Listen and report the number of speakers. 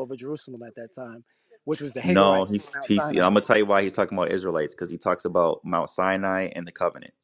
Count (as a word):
two